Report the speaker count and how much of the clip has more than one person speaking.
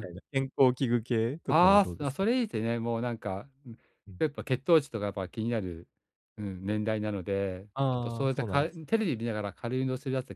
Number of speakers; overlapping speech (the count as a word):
two, about 17%